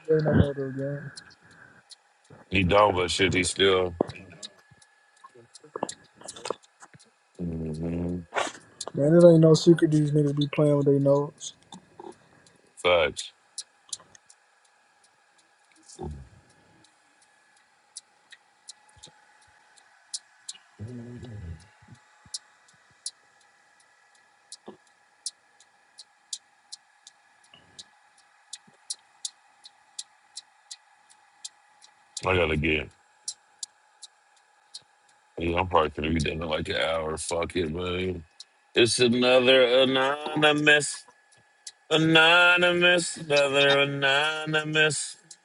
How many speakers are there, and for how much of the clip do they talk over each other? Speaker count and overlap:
2, no overlap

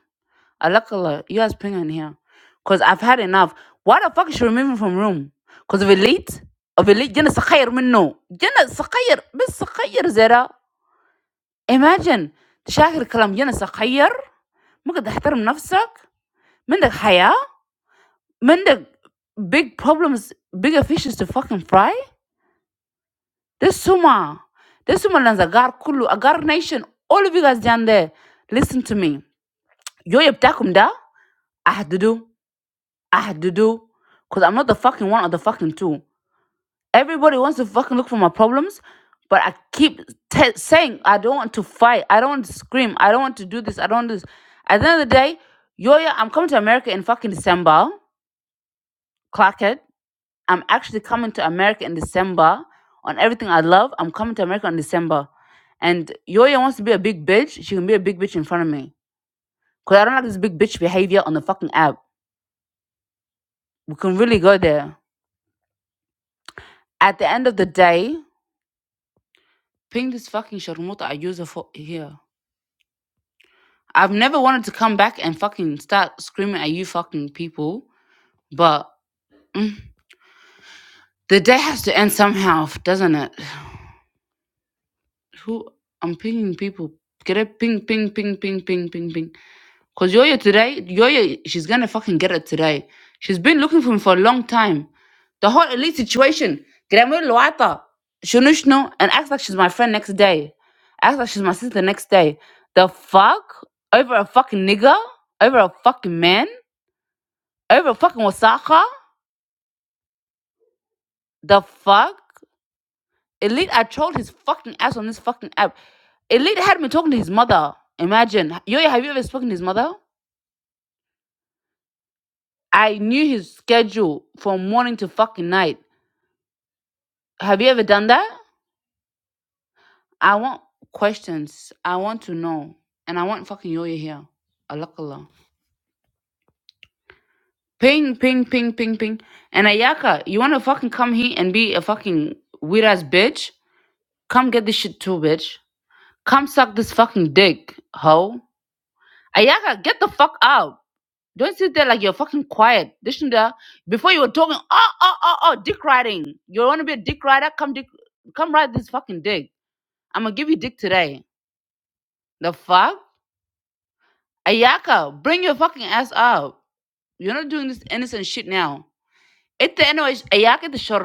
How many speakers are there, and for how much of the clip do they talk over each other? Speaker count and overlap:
1, no overlap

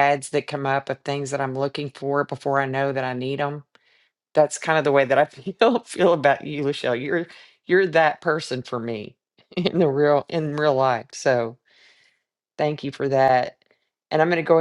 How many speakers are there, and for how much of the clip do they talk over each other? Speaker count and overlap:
1, no overlap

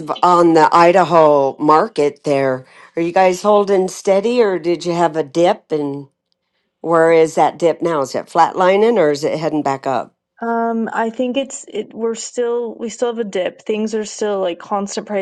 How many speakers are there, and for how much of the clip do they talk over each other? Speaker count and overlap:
2, no overlap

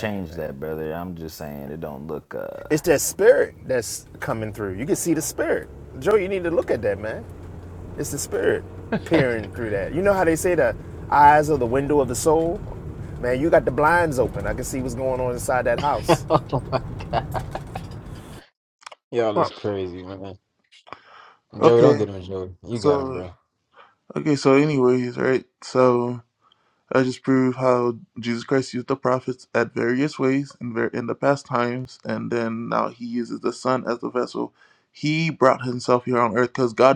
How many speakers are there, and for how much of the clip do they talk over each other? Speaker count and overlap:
4, about 4%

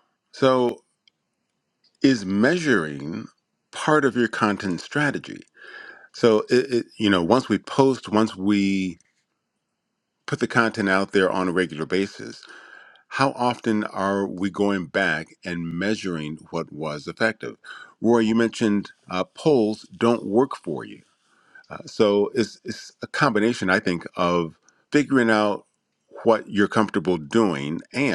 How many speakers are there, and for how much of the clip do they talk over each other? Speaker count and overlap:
1, no overlap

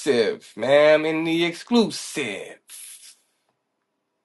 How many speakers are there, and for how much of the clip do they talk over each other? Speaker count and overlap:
1, no overlap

